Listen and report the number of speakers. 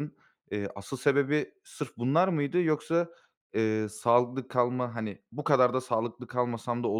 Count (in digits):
1